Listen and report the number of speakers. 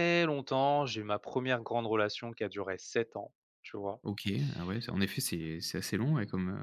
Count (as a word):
two